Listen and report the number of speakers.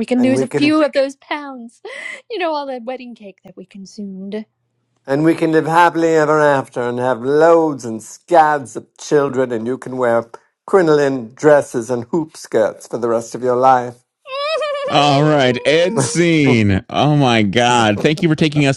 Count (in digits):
3